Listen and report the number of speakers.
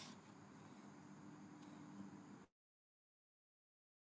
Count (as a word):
zero